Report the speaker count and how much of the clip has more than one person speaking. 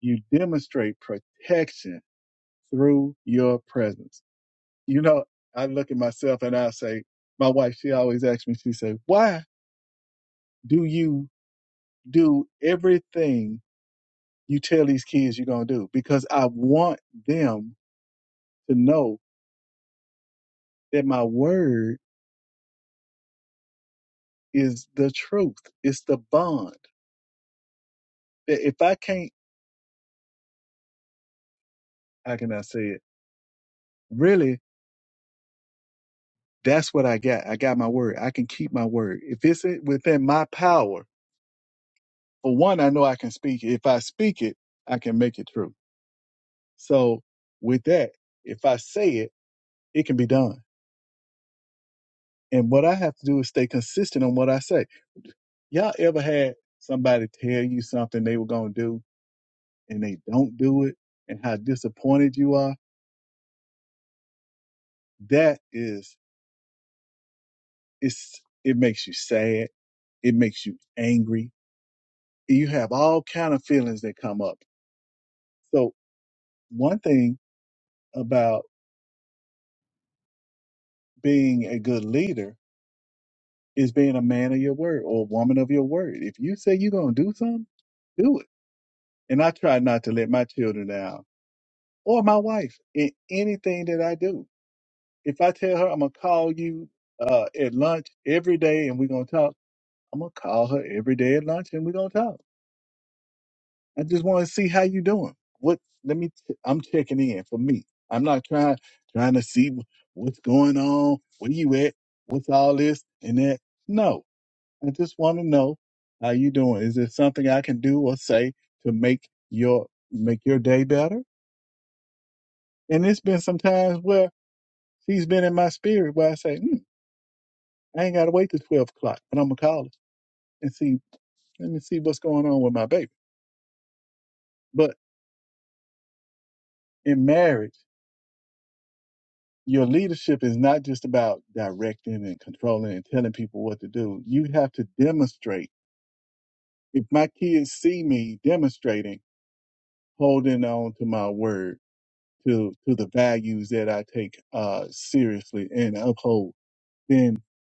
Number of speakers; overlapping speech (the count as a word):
one, no overlap